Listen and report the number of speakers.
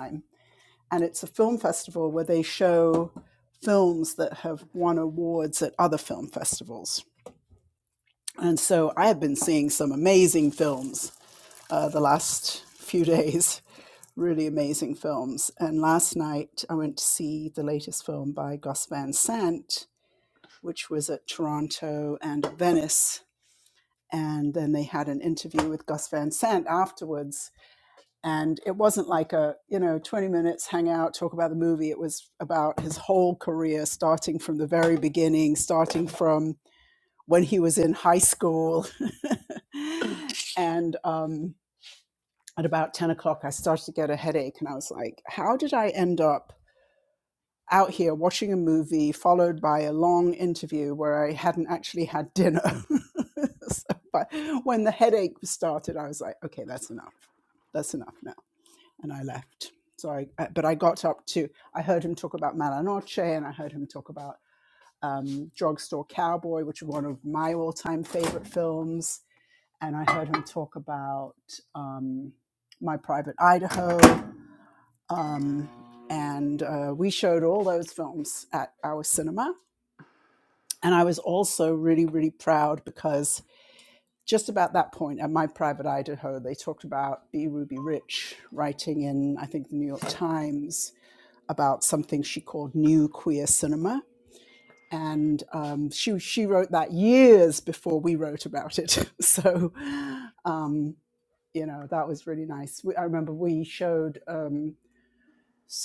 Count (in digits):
1